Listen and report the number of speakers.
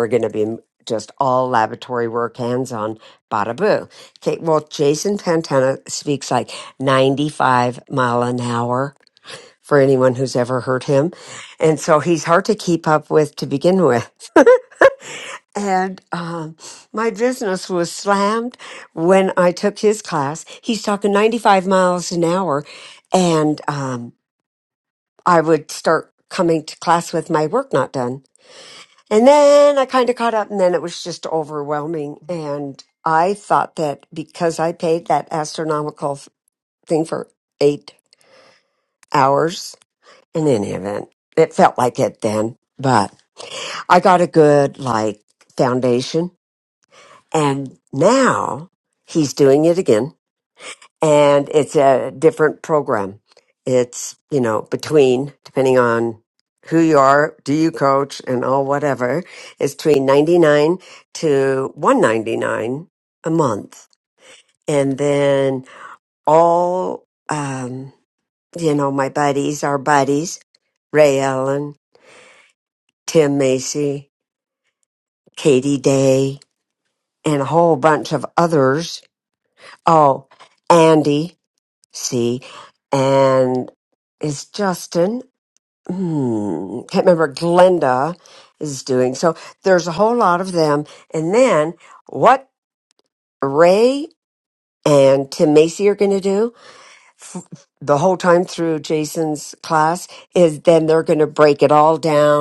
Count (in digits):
1